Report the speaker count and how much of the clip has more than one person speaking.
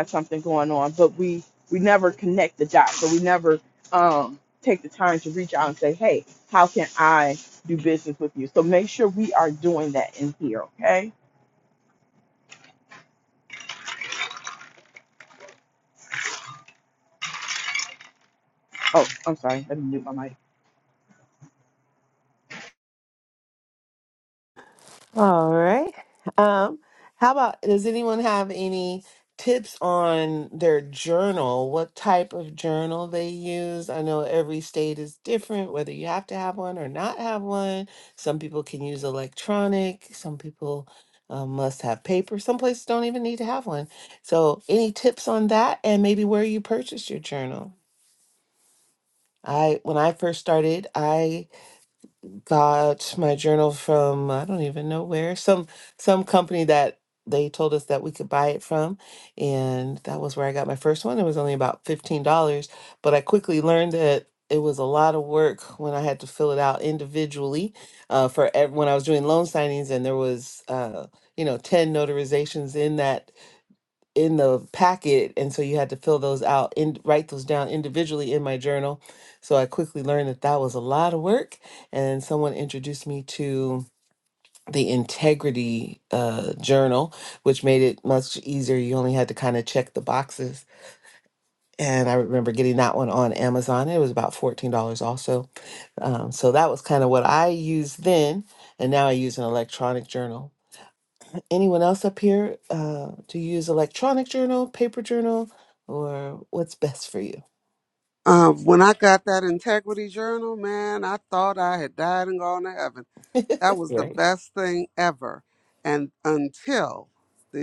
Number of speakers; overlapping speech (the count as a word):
three, under 1%